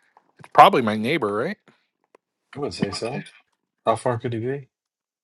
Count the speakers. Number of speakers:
two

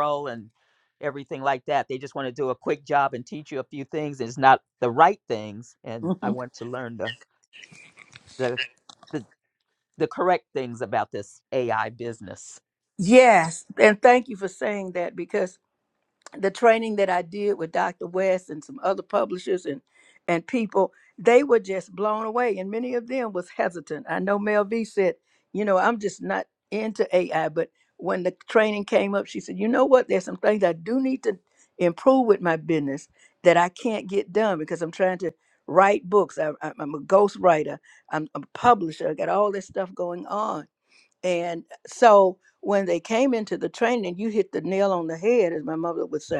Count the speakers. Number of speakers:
two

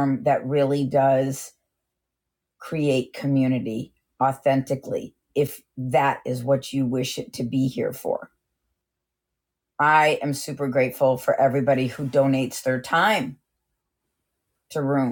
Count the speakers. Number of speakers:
one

